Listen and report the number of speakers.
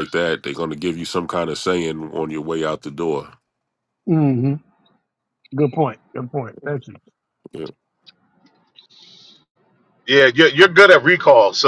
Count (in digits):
3